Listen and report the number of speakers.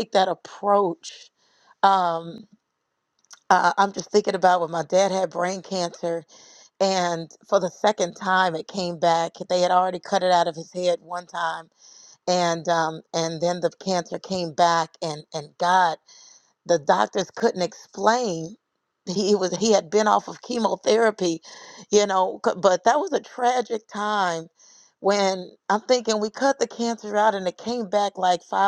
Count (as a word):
one